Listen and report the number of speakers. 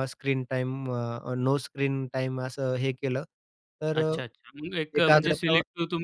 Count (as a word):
two